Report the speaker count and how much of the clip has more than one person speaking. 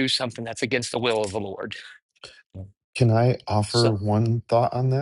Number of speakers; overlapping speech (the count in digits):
2, about 4%